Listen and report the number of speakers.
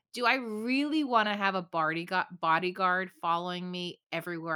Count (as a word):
one